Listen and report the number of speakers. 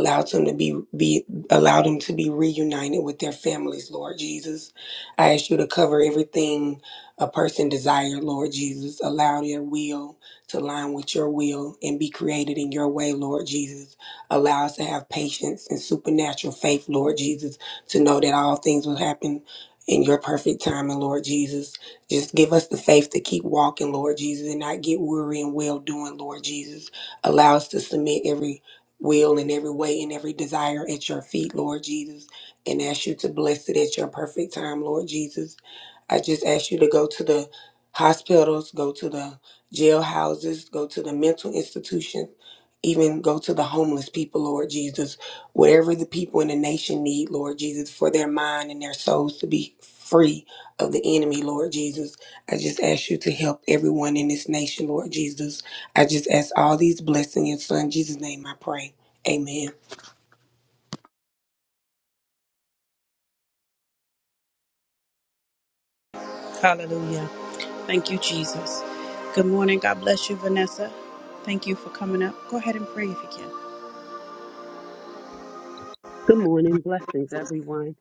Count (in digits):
3